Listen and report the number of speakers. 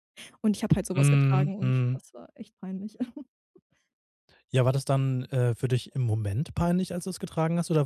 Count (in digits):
2